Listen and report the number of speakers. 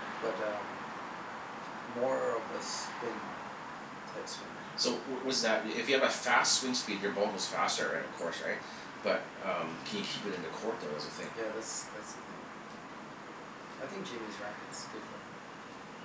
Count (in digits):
2